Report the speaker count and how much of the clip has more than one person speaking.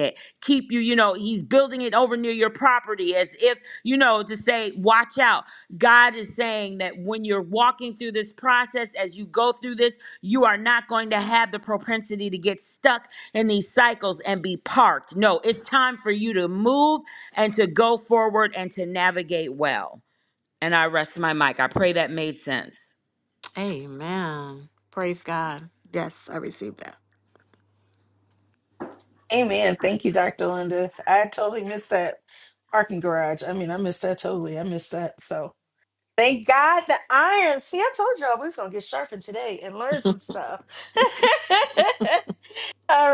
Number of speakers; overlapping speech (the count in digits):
3, no overlap